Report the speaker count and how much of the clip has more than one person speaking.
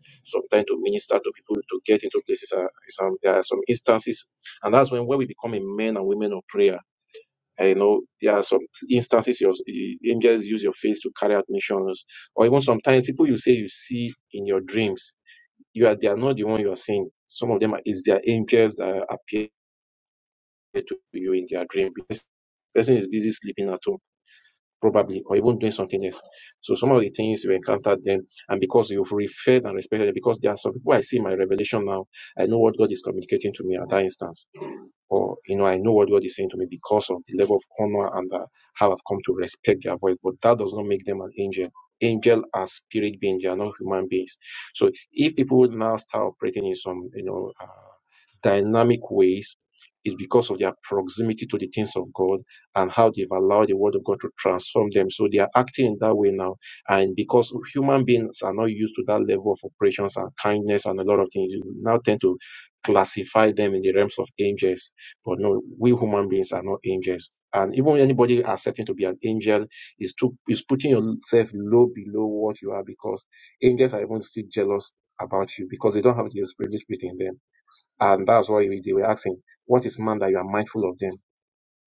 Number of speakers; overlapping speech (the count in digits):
1, no overlap